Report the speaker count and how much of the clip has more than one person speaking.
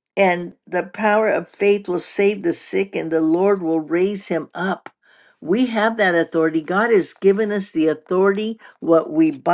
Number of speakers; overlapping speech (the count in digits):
1, no overlap